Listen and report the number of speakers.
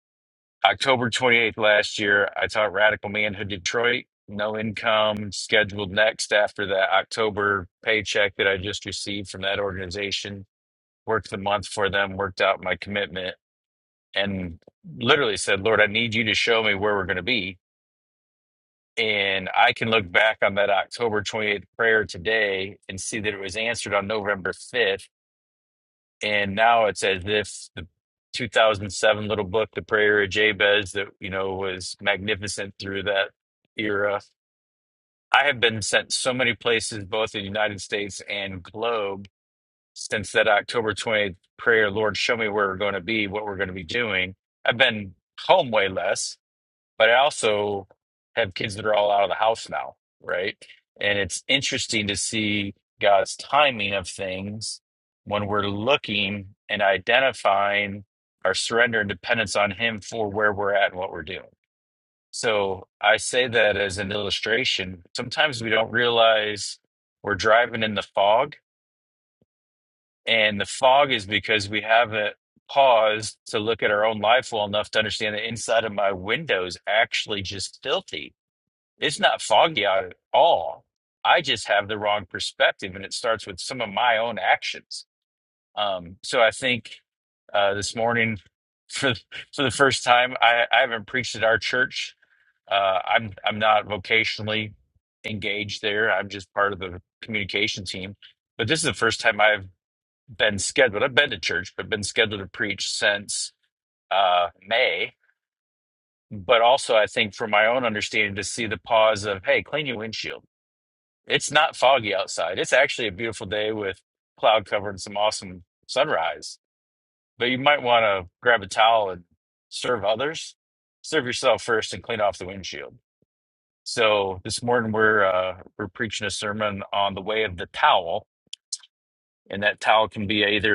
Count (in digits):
1